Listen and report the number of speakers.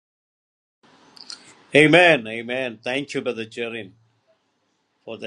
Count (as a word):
one